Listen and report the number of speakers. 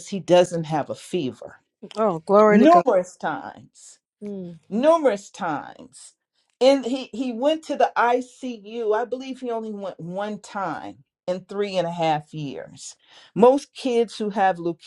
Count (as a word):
two